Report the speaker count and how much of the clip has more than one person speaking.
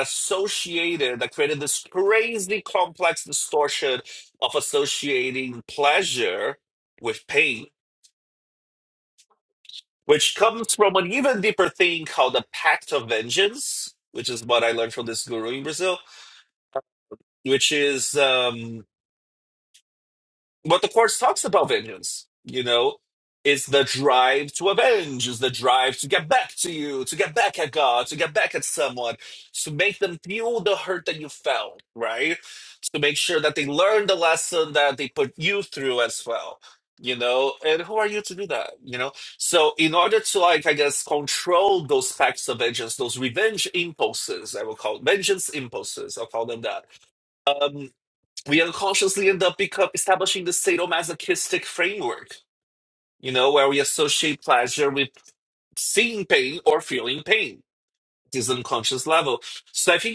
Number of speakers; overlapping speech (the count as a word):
one, no overlap